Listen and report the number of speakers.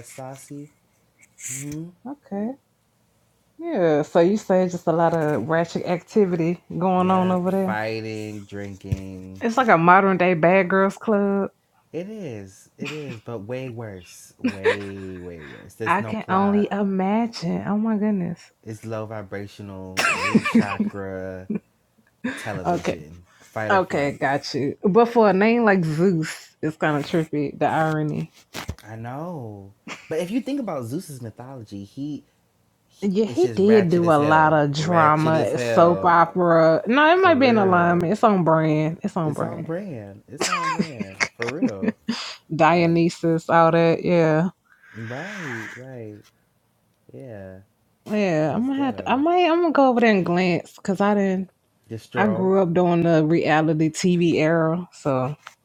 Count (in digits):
2